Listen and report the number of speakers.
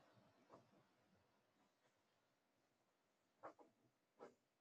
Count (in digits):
0